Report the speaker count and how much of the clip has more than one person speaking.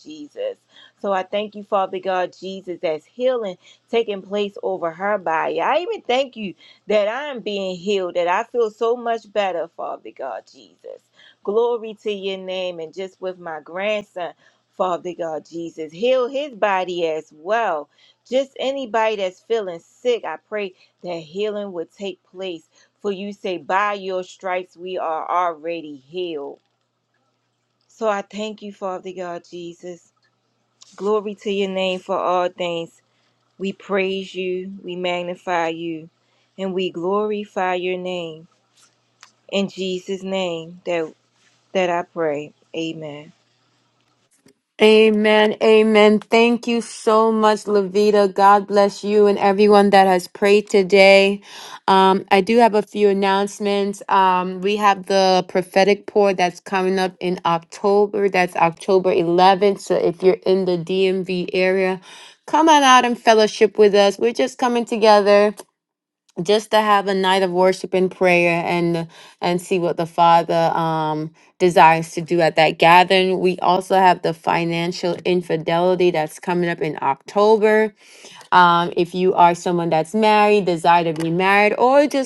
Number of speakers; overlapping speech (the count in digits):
2, no overlap